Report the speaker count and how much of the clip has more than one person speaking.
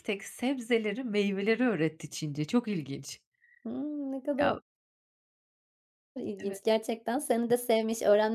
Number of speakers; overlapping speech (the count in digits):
2, about 4%